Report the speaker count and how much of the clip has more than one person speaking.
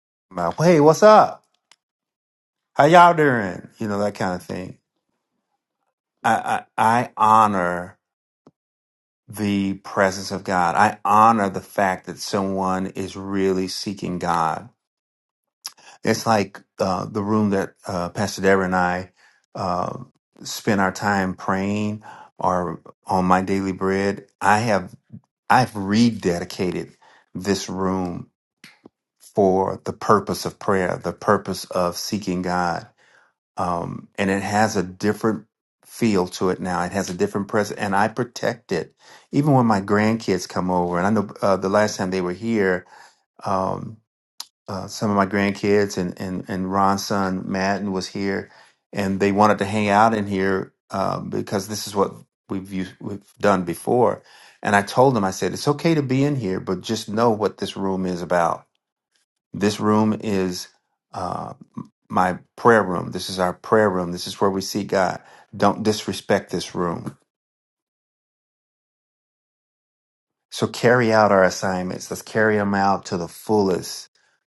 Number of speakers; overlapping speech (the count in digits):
1, no overlap